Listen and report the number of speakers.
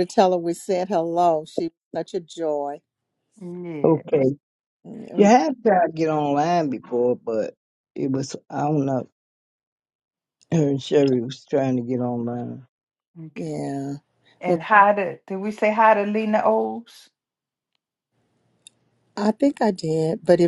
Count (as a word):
three